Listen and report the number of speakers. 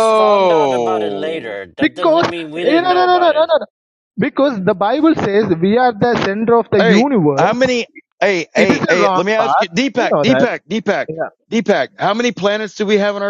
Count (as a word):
three